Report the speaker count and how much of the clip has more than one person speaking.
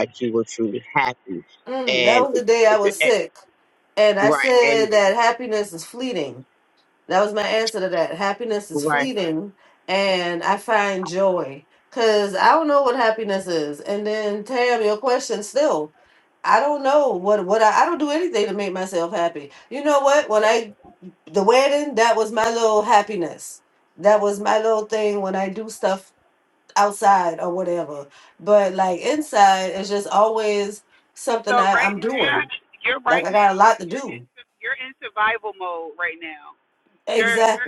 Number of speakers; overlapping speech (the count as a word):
three, about 10%